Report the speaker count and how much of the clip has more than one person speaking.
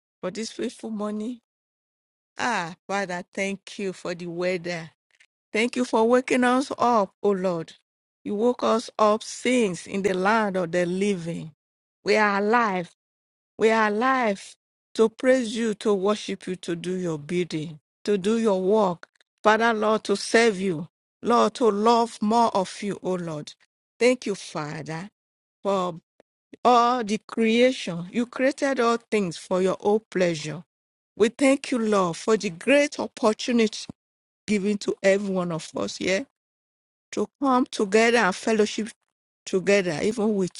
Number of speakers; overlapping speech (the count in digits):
1, no overlap